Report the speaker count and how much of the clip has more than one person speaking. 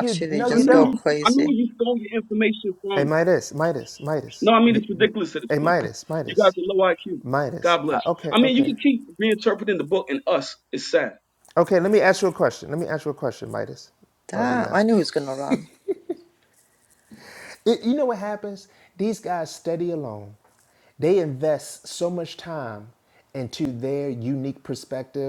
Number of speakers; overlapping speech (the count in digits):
3, about 16%